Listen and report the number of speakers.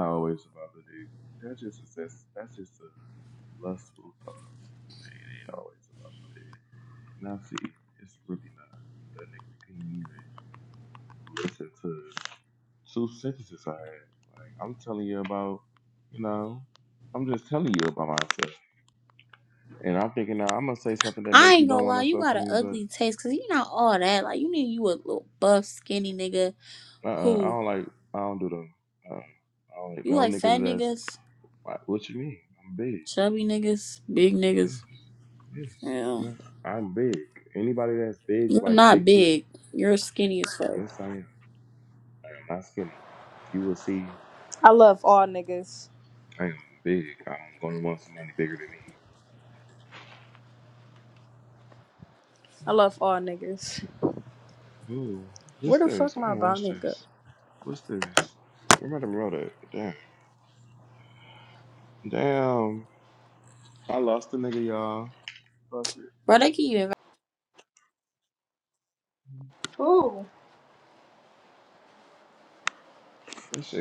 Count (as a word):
three